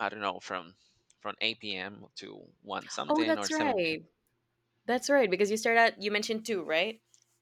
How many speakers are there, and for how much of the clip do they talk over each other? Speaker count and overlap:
two, about 12%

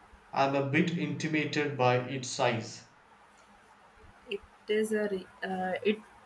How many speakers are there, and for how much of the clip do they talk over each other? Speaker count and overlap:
two, no overlap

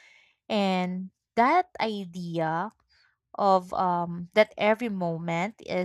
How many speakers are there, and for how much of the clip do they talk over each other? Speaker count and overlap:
one, no overlap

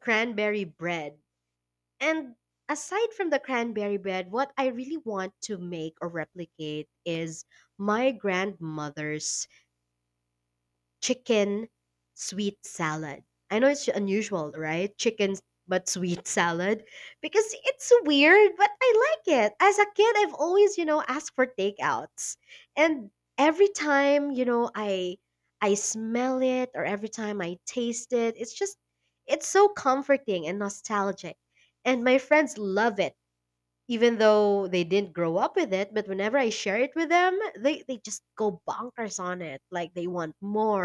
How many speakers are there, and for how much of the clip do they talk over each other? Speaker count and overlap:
one, no overlap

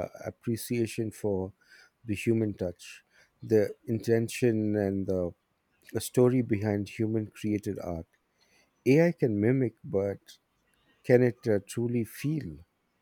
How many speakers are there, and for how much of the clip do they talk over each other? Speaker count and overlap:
one, no overlap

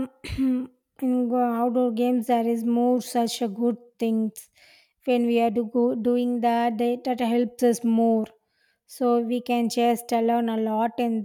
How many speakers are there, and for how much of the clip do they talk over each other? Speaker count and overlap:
one, no overlap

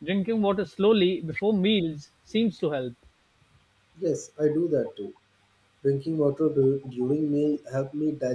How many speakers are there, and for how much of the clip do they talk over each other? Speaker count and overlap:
two, no overlap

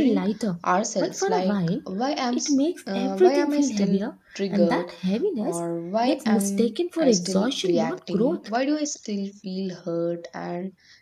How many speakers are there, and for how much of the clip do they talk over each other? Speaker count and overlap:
two, about 52%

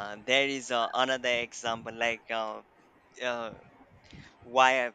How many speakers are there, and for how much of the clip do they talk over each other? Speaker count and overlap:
one, no overlap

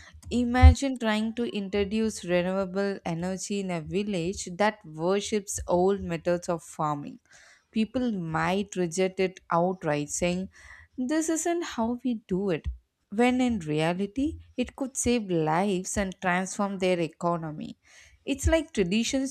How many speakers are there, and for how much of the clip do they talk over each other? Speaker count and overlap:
one, no overlap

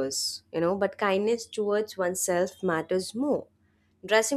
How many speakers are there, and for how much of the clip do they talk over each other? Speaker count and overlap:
one, no overlap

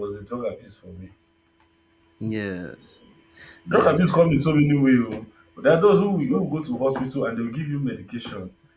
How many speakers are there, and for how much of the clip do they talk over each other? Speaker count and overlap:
two, about 7%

